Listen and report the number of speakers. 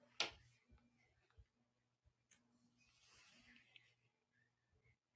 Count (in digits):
0